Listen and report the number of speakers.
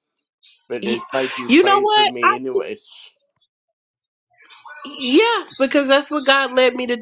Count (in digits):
2